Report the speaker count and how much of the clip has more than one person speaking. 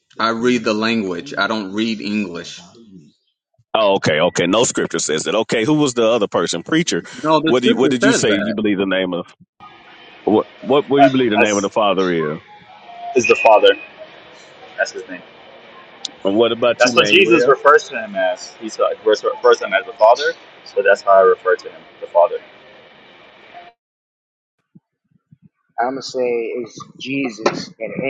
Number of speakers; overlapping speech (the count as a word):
four, about 8%